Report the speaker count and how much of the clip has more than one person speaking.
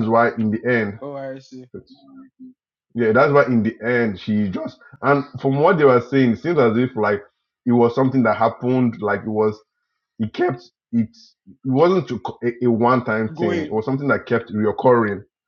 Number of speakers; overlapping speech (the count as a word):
two, about 3%